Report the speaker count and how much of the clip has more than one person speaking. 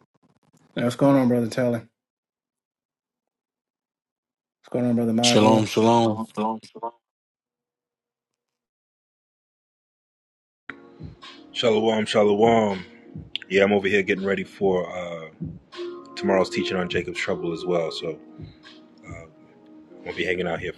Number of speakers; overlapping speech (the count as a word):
three, about 2%